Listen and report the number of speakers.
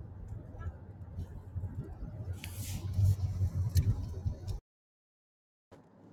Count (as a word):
zero